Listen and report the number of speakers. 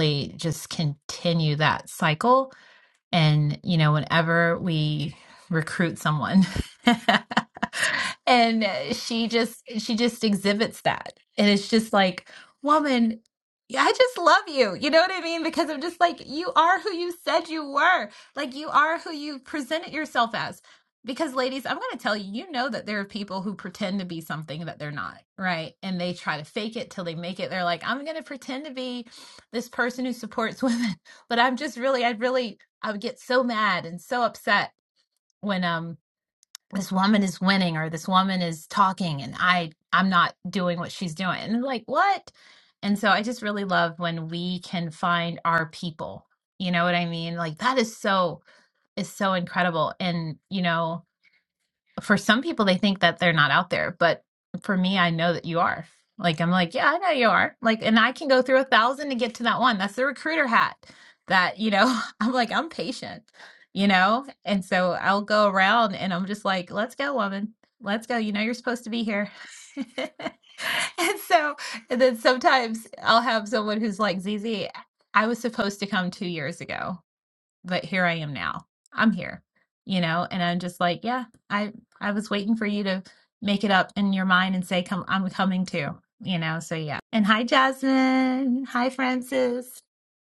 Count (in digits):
1